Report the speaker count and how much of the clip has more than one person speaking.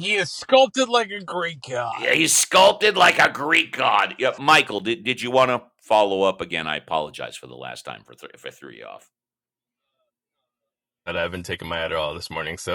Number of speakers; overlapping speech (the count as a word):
three, about 1%